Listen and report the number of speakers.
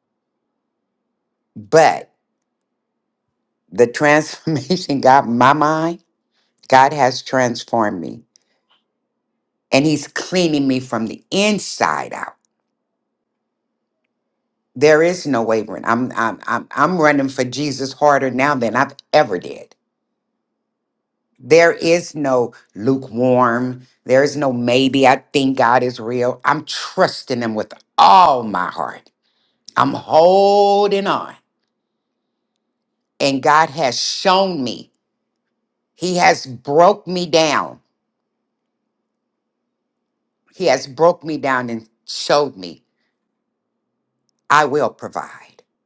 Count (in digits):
1